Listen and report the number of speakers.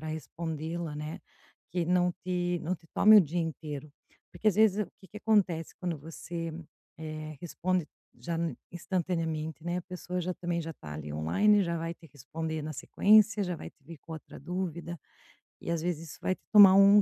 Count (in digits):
1